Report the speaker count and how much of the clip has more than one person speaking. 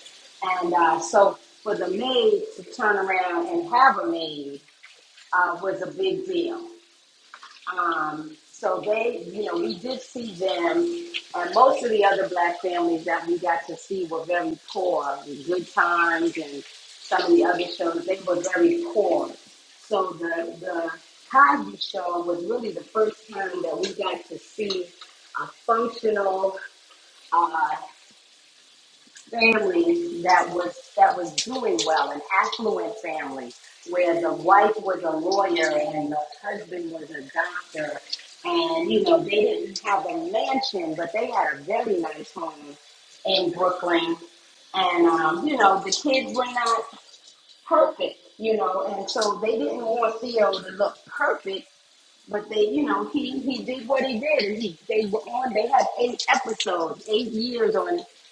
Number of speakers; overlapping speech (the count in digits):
1, no overlap